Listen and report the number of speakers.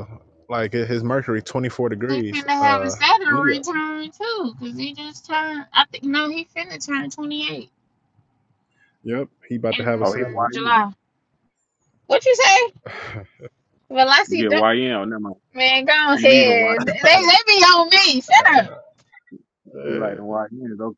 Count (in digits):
3